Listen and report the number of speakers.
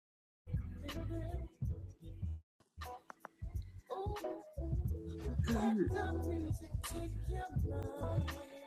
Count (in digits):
0